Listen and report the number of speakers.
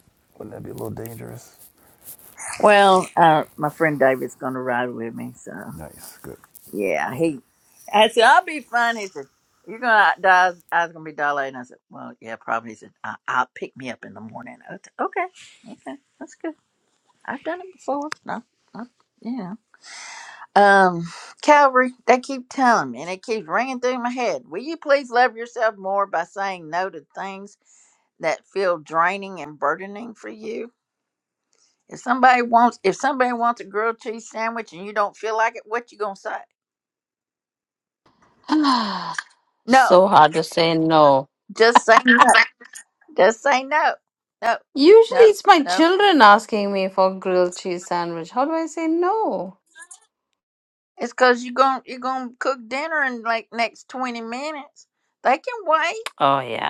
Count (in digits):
3